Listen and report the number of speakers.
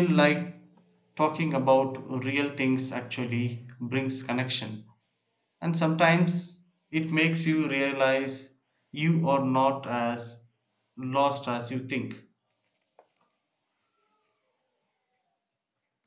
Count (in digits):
1